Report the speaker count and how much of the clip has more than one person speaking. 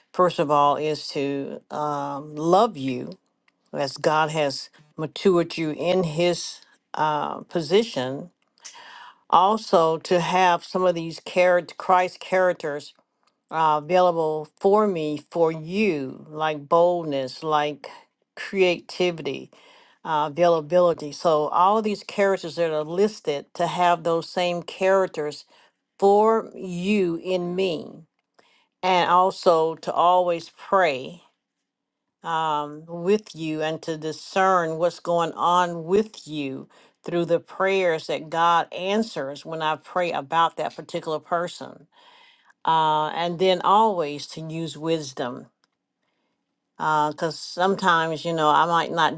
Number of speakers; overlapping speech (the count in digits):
1, no overlap